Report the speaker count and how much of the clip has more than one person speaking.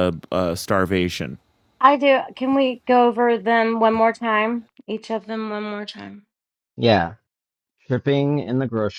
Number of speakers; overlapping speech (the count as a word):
three, no overlap